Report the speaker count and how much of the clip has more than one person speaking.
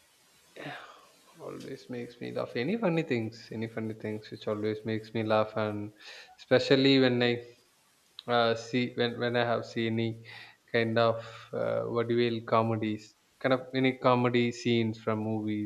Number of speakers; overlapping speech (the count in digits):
1, no overlap